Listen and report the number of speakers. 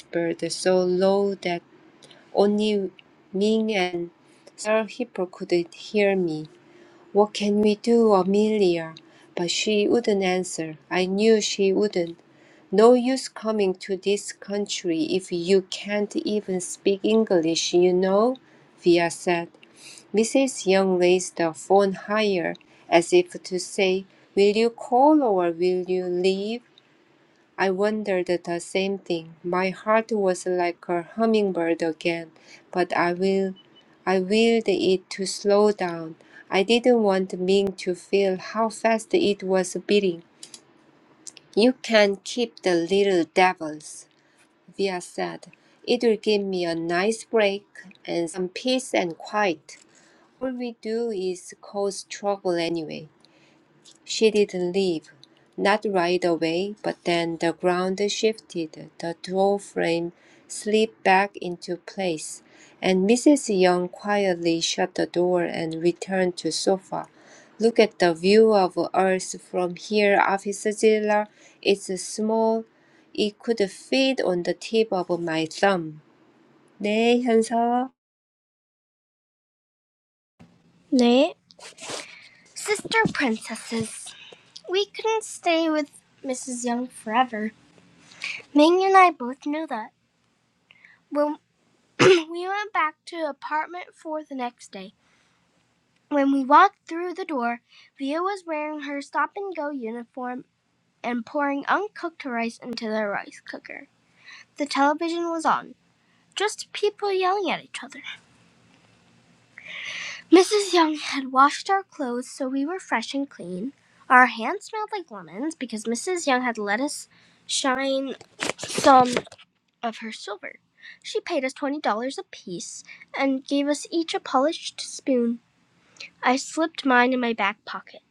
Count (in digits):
2